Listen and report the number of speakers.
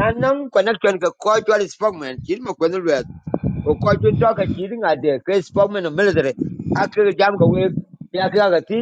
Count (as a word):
one